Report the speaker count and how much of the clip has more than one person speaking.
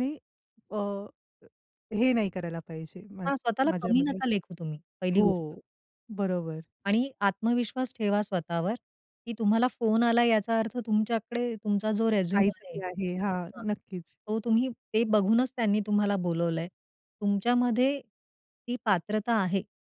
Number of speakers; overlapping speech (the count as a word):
two, about 7%